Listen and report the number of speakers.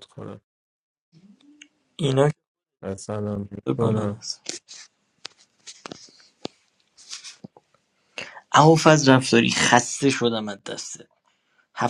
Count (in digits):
2